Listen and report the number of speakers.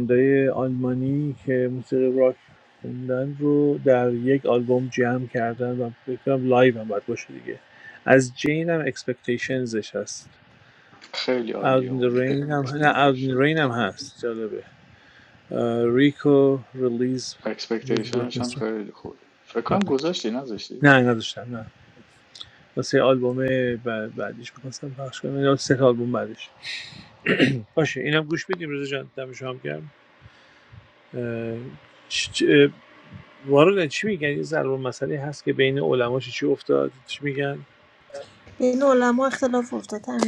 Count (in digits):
3